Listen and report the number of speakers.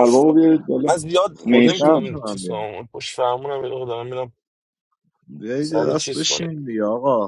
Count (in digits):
3